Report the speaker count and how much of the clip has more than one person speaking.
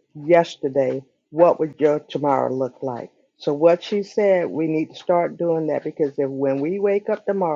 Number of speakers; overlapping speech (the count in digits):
1, no overlap